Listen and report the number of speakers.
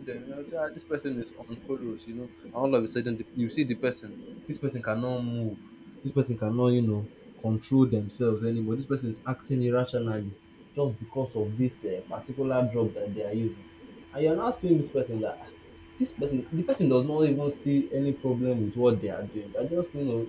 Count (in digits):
1